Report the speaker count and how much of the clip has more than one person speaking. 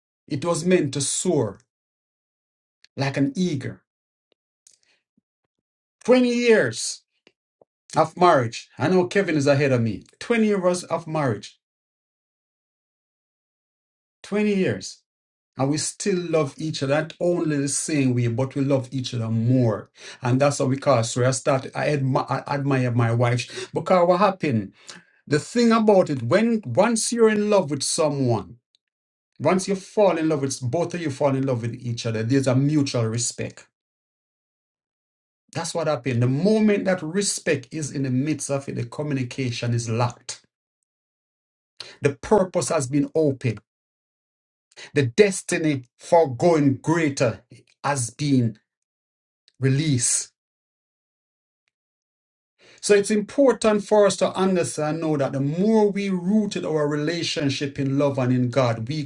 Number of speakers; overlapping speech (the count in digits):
1, no overlap